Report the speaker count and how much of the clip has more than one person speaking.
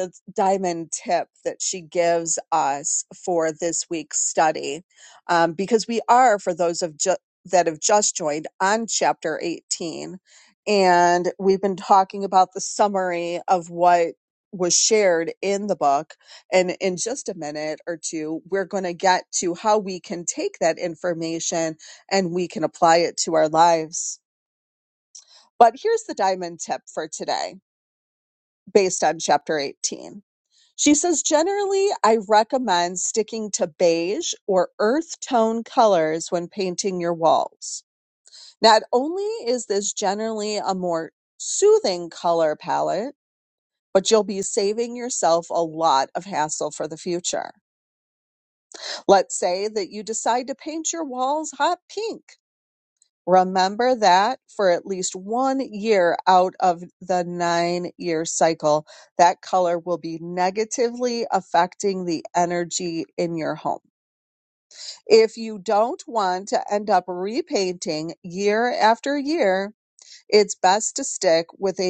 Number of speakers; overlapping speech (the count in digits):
1, no overlap